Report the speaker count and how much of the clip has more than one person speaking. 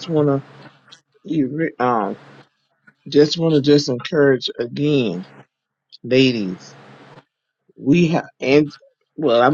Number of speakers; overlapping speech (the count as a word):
one, no overlap